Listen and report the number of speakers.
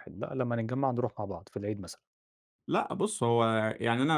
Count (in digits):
2